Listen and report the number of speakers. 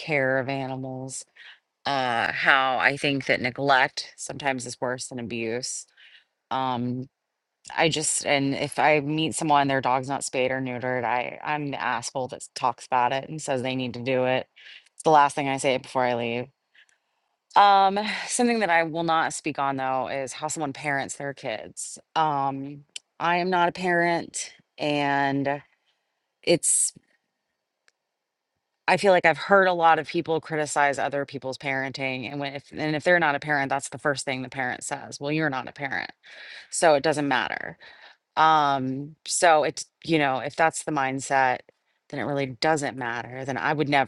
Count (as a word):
one